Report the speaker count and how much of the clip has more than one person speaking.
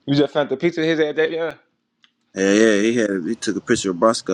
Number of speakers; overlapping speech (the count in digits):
2, no overlap